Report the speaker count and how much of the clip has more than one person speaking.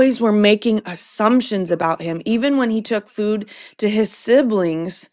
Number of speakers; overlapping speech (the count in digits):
1, no overlap